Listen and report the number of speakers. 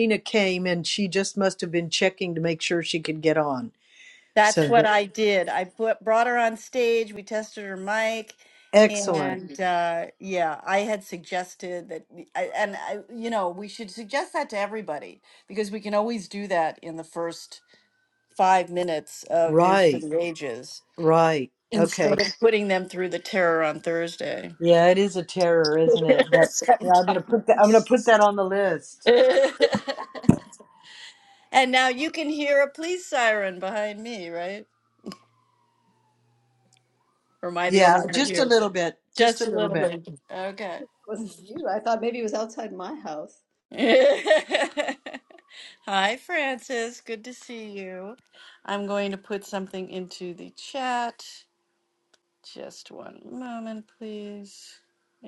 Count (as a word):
three